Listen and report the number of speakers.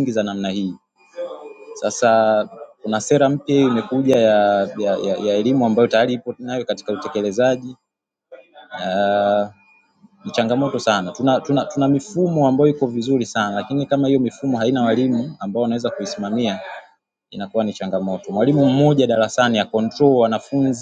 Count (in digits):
1